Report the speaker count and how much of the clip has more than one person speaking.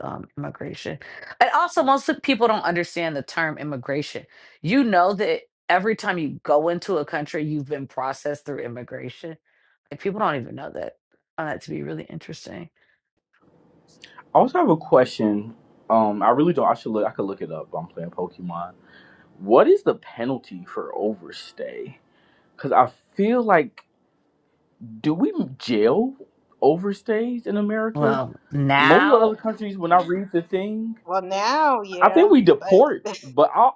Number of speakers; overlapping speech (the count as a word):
three, about 5%